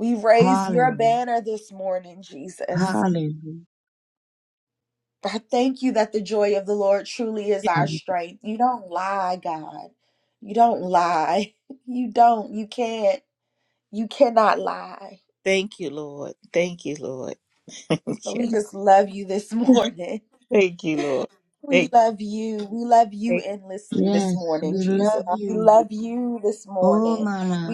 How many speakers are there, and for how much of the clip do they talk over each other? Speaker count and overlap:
3, about 16%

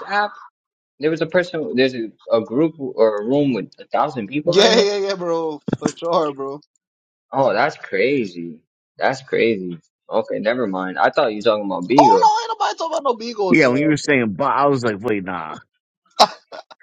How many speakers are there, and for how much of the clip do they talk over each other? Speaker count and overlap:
3, about 7%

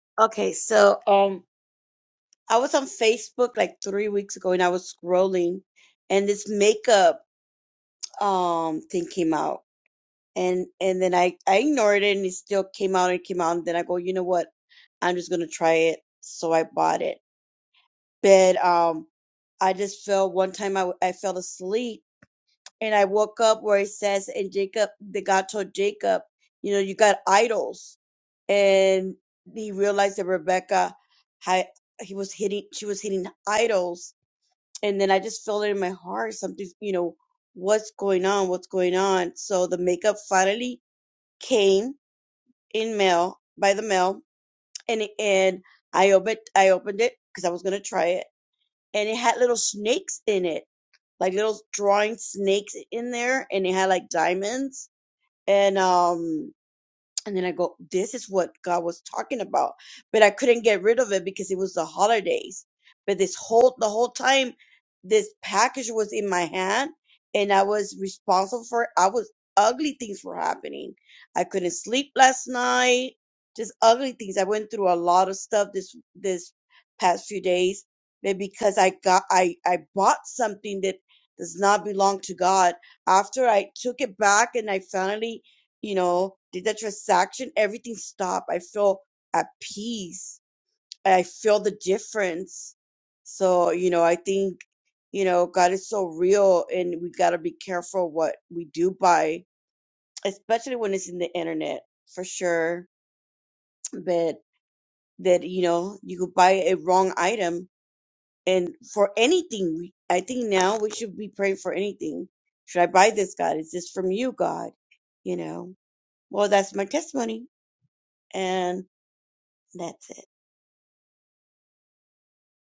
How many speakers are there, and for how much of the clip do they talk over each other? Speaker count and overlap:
1, no overlap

